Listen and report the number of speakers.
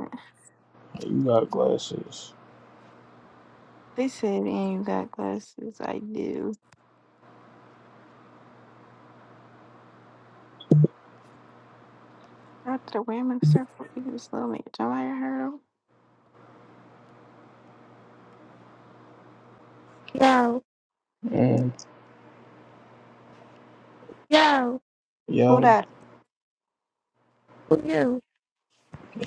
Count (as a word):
three